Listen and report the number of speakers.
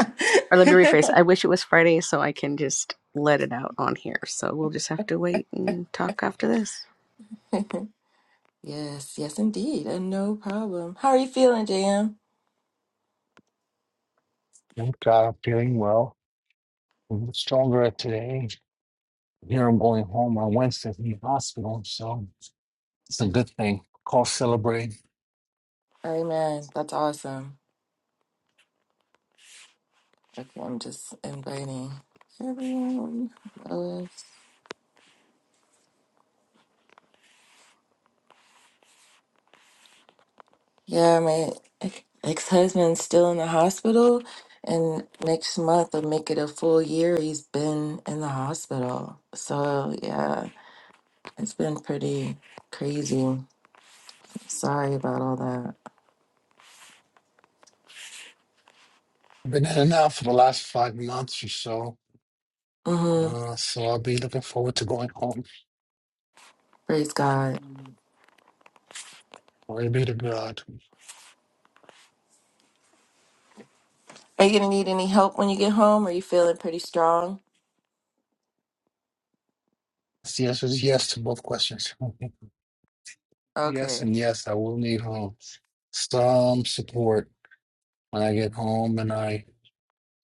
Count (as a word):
three